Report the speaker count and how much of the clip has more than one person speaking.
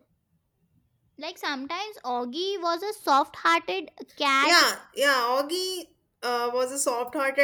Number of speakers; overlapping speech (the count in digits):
2, about 3%